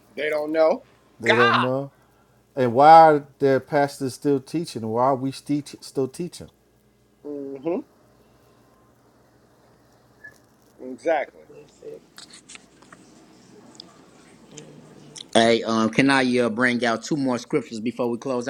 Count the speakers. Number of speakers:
3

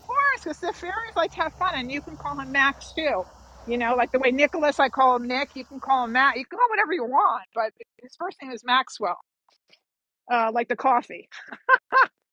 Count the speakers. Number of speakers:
1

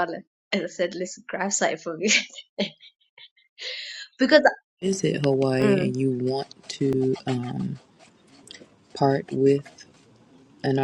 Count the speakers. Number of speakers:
2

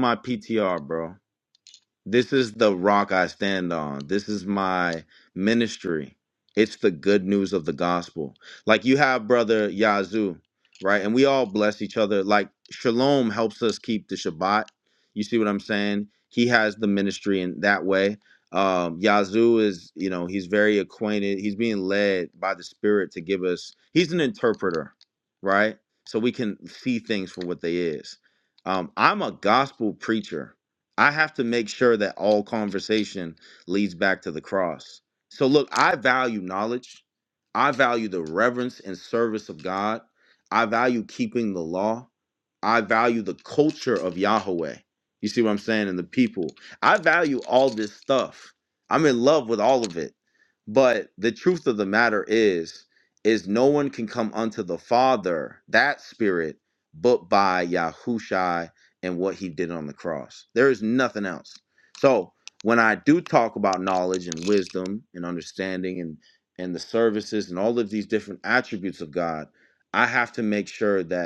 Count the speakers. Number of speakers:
1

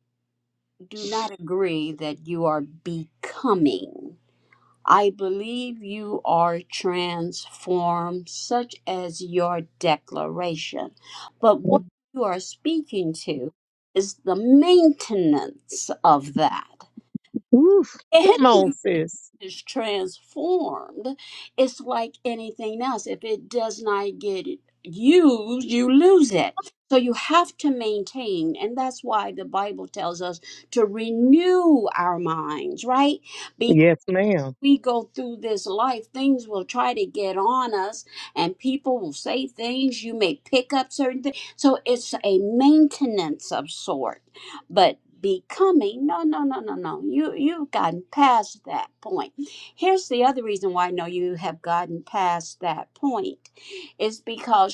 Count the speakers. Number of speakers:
2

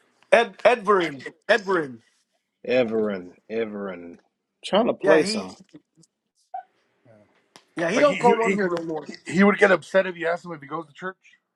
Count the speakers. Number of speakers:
3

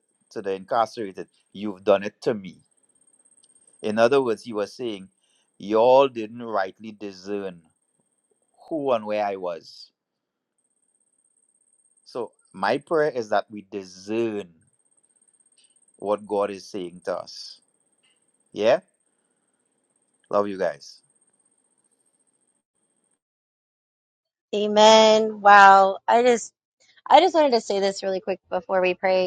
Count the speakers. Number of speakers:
2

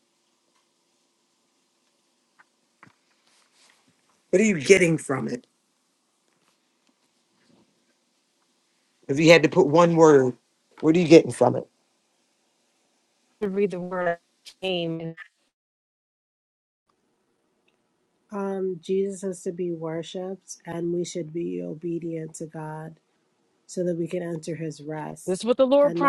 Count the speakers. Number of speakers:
3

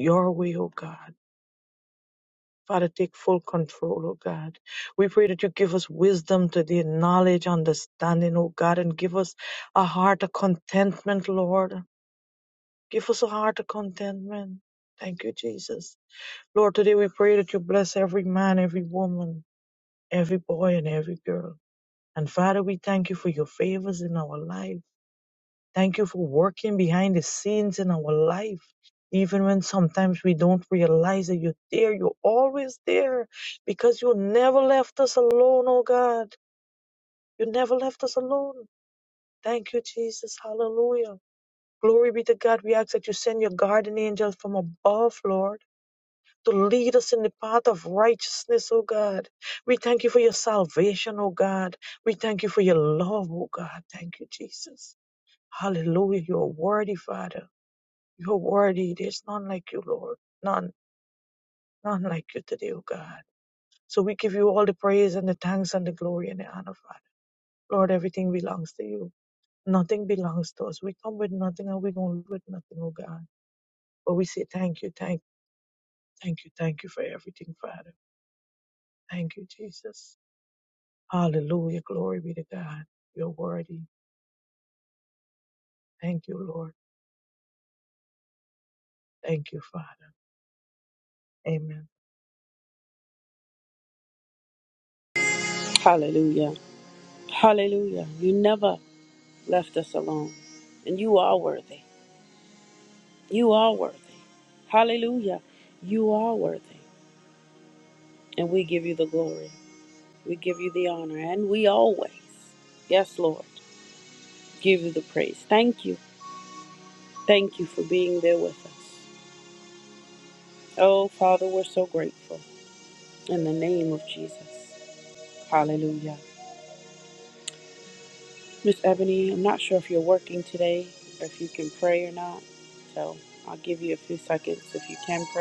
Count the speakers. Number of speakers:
2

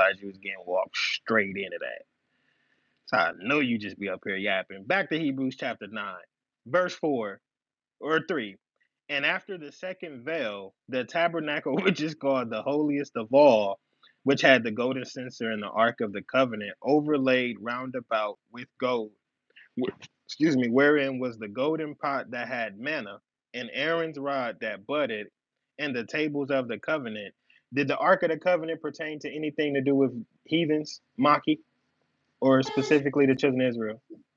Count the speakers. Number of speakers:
1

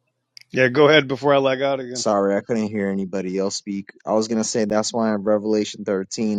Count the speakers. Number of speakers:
2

